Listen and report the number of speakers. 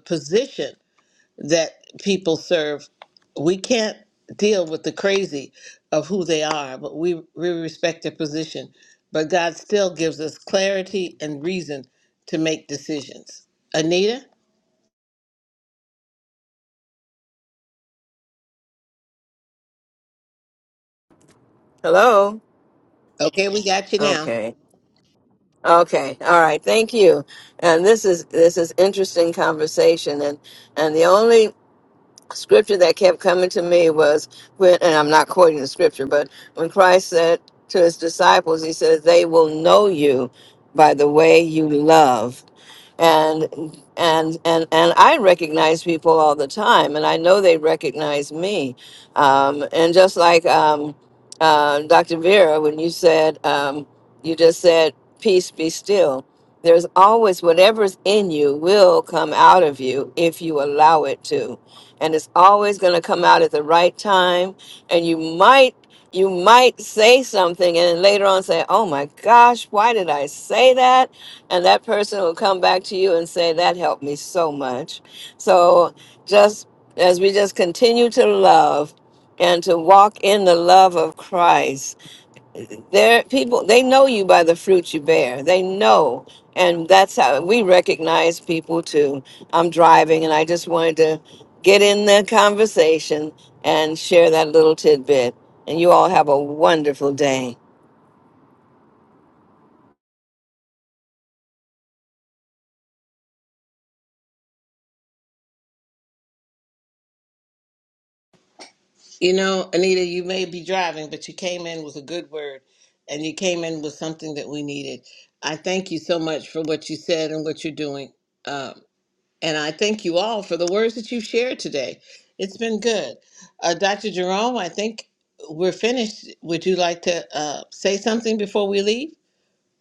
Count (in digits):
2